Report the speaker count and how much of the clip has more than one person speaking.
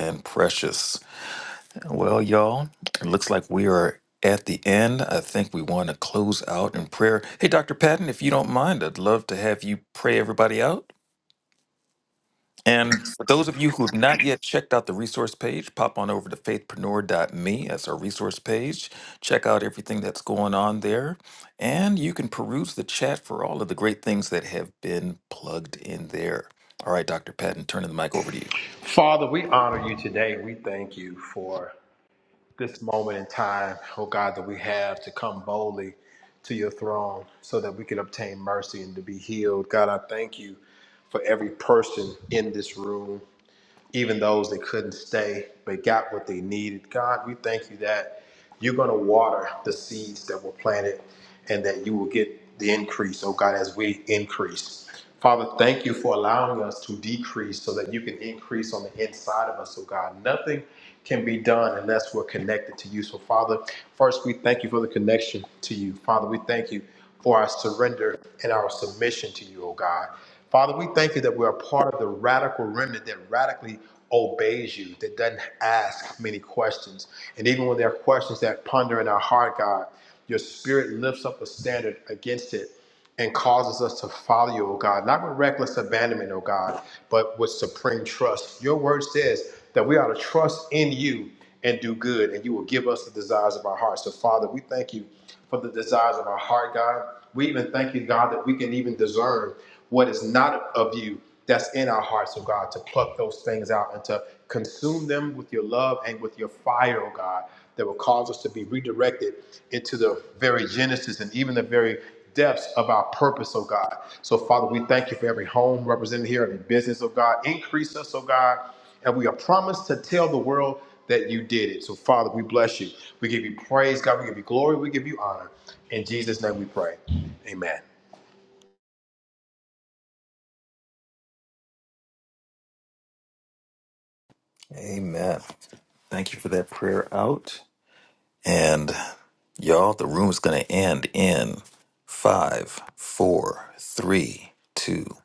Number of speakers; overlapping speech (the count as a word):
two, no overlap